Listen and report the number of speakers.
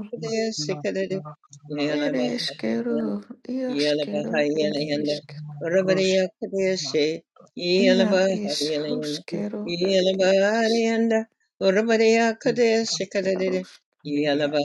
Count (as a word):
three